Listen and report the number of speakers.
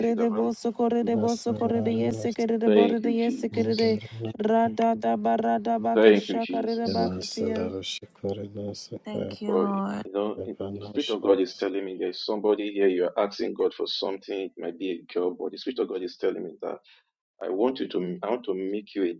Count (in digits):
3